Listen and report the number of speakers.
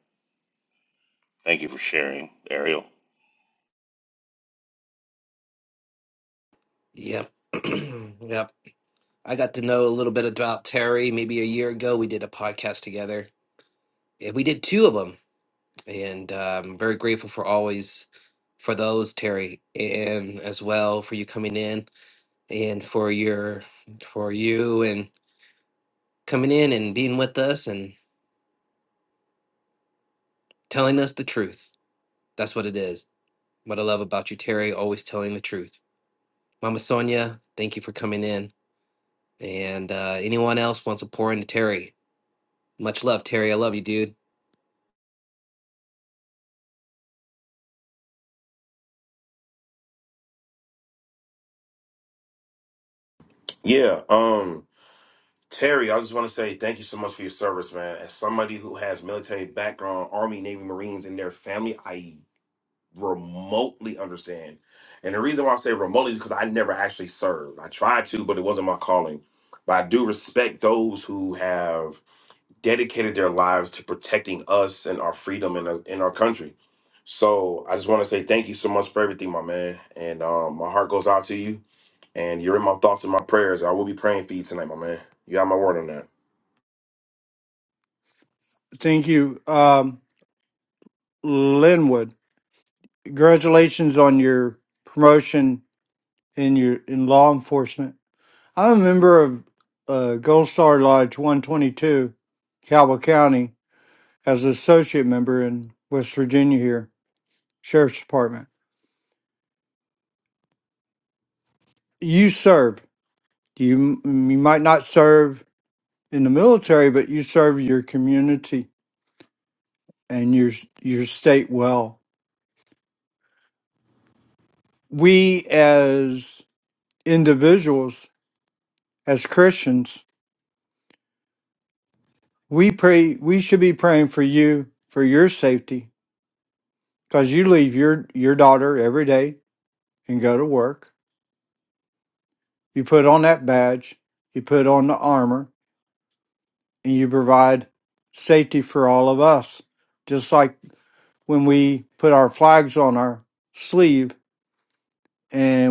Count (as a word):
four